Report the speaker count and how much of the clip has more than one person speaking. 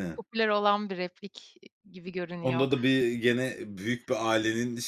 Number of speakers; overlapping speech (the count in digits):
2, about 8%